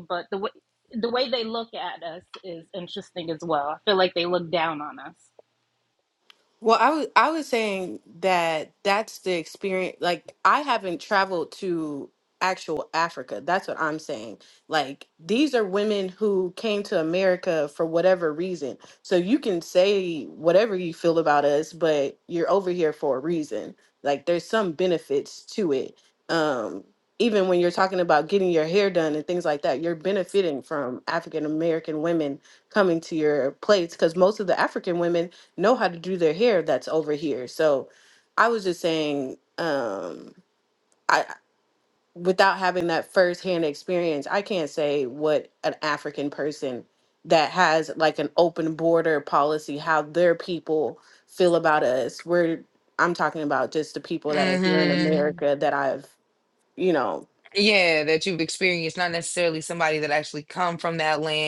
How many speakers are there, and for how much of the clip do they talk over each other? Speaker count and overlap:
three, about 2%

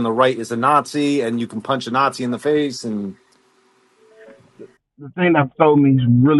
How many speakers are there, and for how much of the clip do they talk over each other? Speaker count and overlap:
two, no overlap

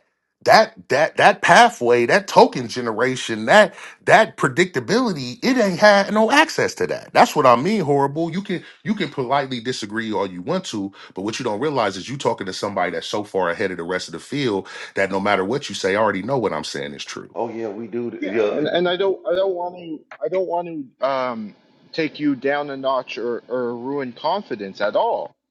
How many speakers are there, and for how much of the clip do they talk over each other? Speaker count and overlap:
three, about 2%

